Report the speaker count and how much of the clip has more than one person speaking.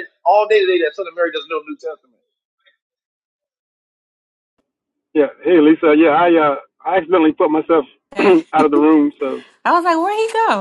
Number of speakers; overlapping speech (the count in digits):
3, no overlap